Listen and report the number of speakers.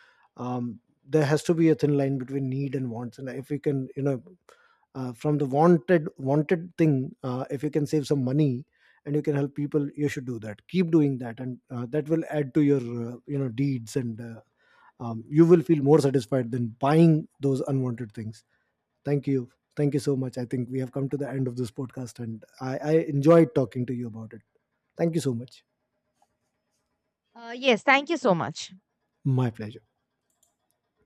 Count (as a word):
two